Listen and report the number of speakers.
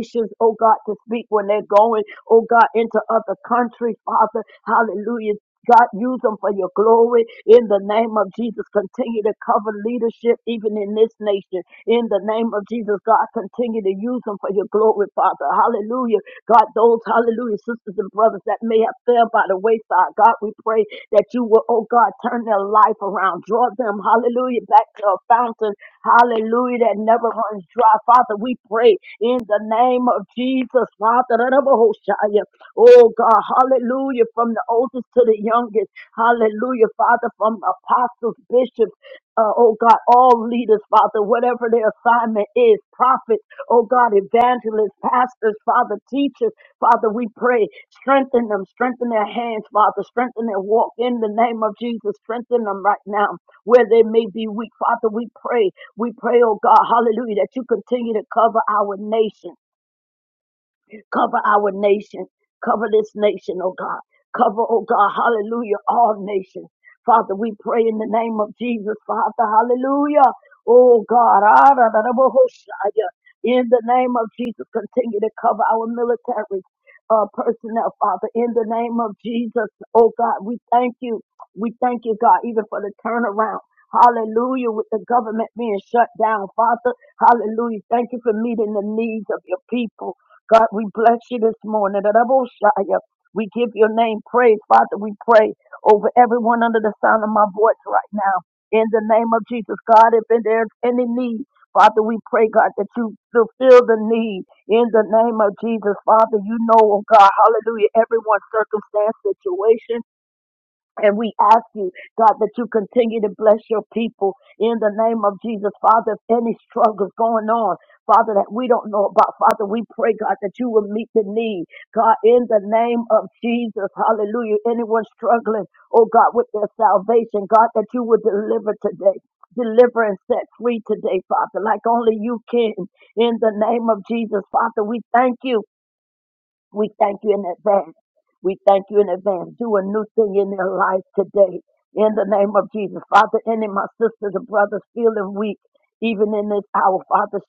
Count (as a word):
one